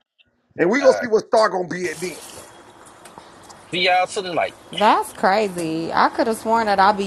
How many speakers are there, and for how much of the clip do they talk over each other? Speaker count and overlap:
three, about 4%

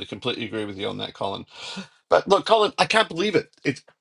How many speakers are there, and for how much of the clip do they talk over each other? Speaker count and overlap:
one, no overlap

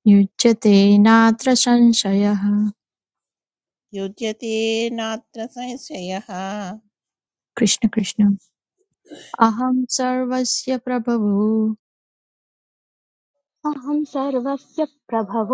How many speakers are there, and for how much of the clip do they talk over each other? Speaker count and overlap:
three, no overlap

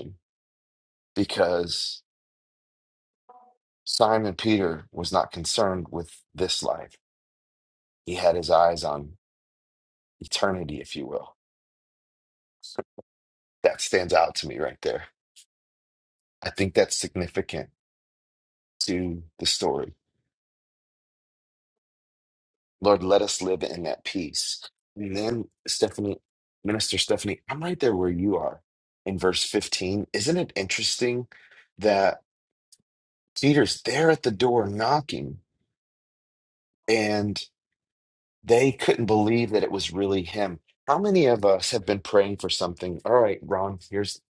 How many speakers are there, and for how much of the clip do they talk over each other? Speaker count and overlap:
one, no overlap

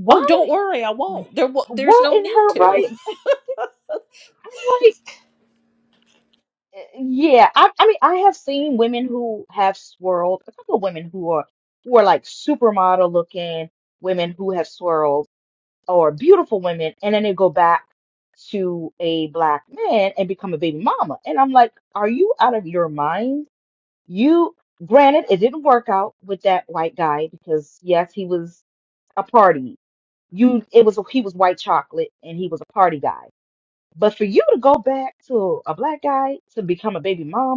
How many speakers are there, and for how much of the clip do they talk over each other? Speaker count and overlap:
two, about 4%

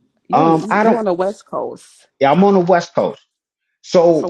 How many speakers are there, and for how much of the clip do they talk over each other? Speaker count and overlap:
two, about 21%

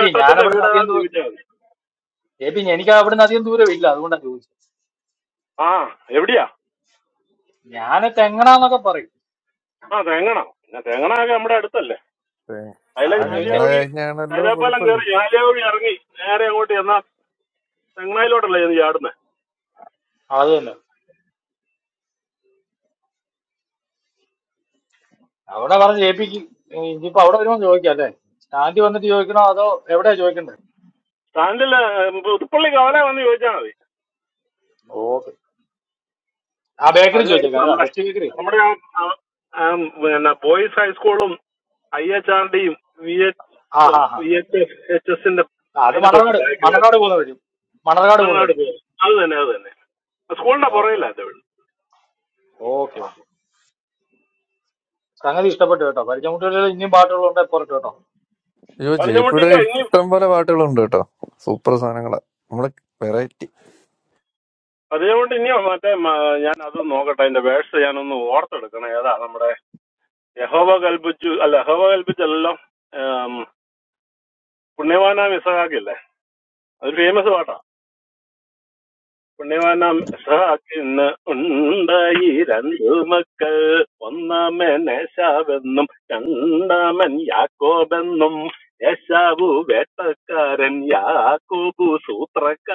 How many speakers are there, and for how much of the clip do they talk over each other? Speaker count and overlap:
three, about 6%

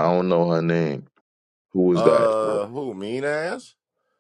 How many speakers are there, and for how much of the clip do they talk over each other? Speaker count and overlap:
two, about 9%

